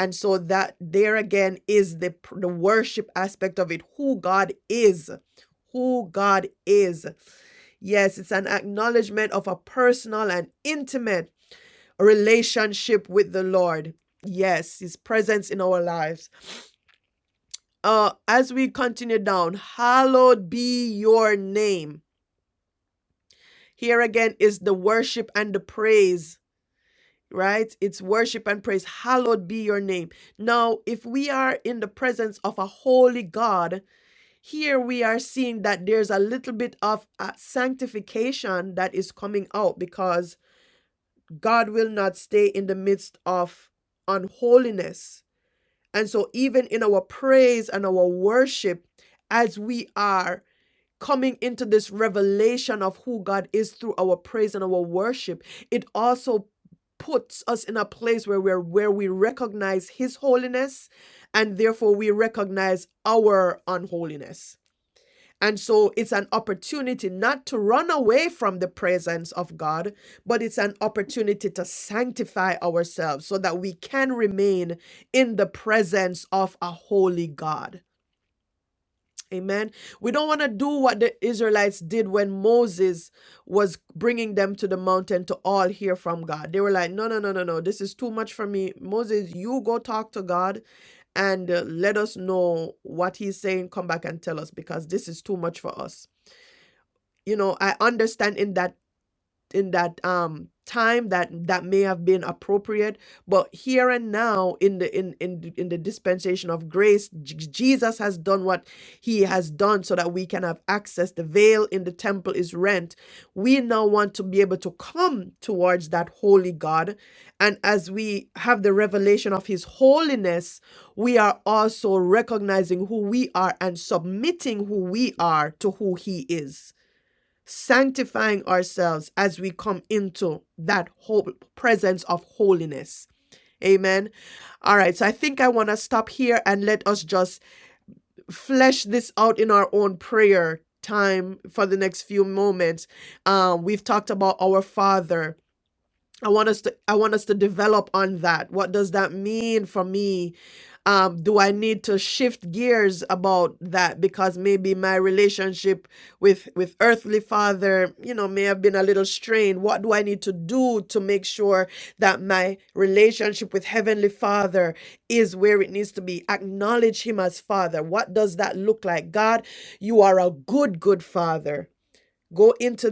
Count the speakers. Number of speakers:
1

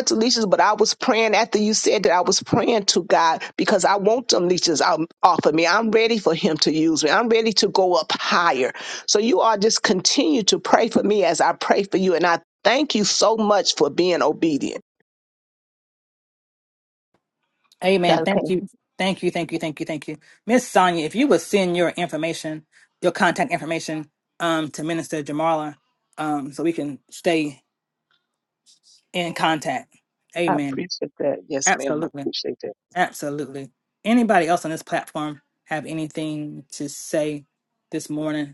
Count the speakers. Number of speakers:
2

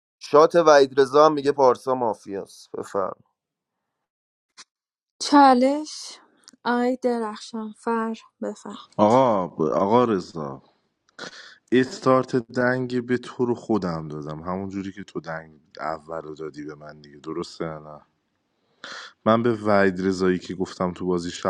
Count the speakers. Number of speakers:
3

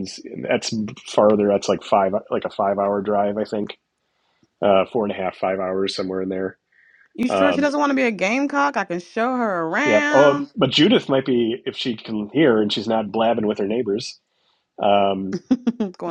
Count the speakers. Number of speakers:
2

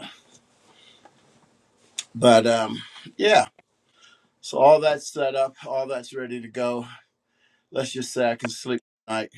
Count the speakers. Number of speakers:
1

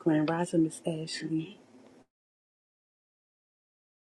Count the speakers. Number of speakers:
1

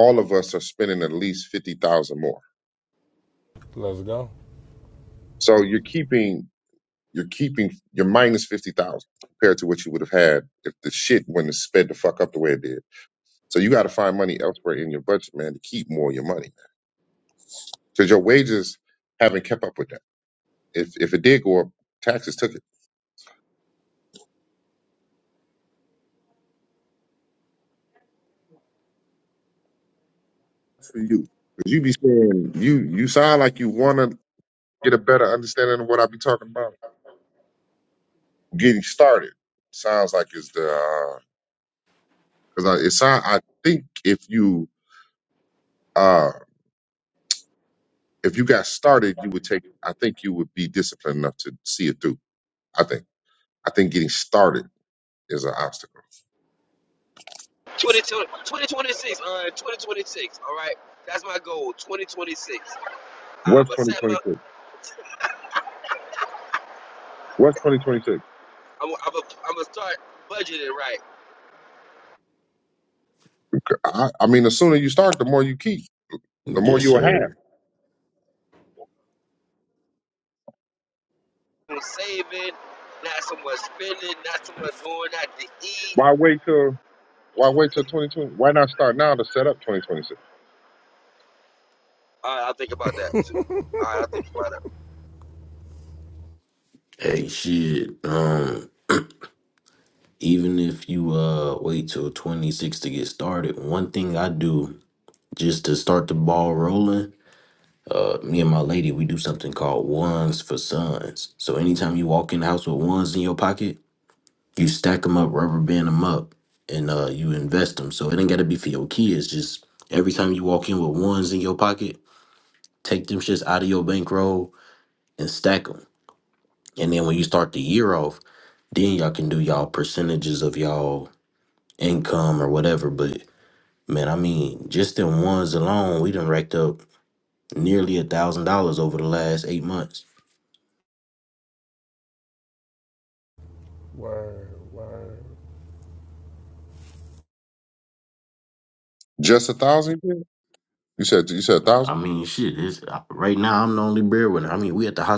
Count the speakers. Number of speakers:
4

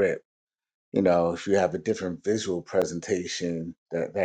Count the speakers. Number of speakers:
1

